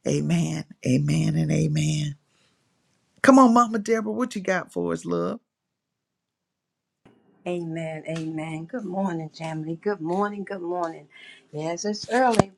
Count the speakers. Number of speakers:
2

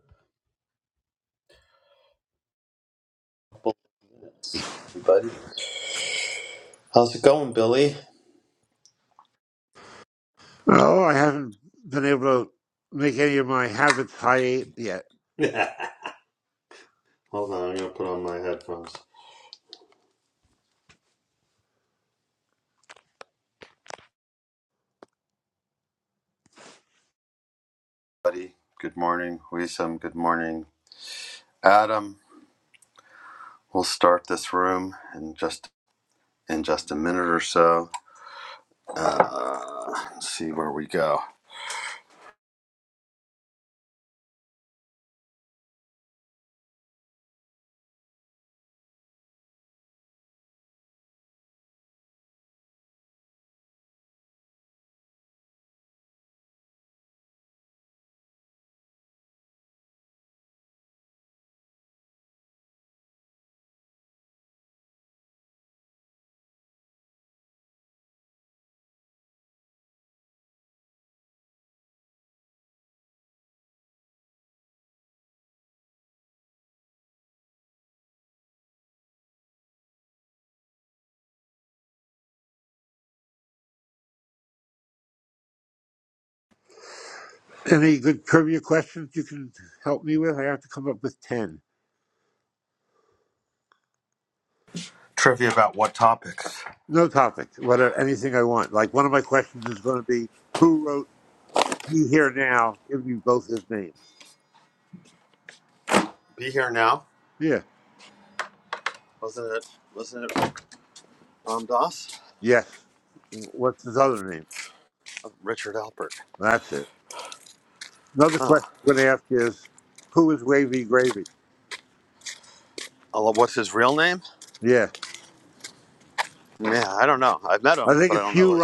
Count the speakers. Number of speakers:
2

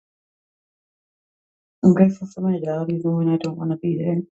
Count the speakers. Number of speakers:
1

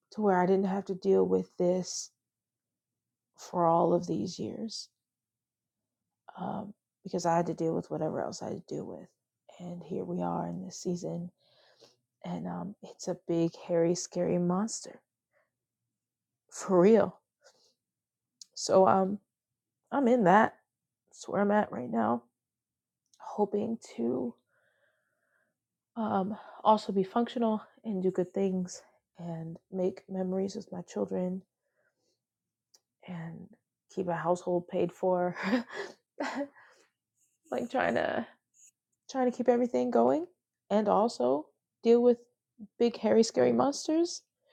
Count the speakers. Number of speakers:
1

